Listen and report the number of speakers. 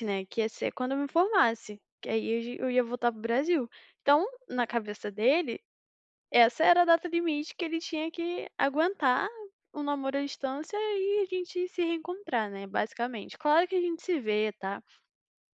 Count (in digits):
1